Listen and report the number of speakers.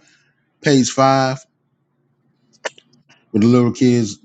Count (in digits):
1